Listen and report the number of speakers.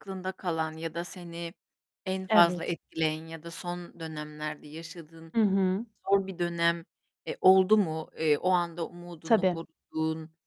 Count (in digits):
2